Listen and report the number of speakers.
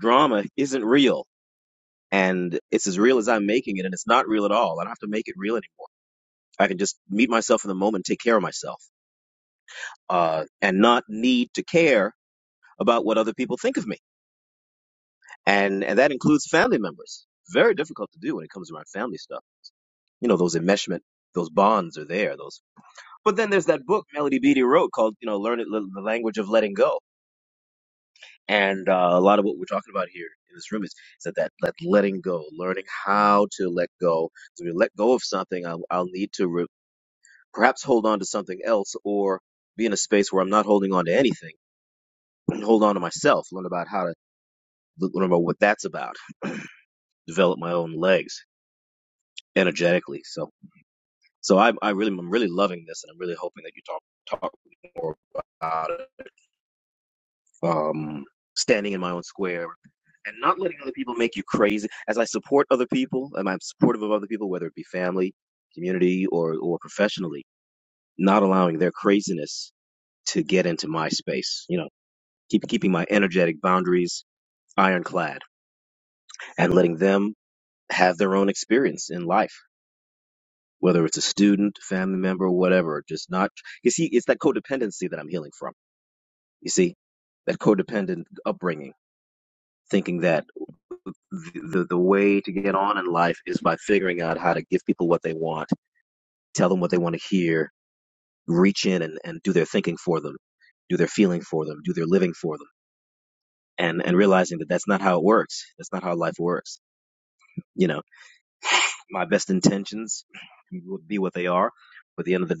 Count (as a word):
one